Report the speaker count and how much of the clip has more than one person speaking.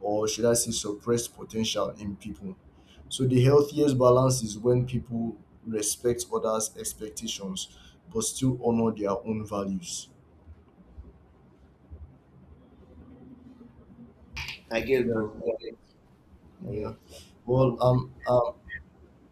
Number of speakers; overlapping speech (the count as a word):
two, about 4%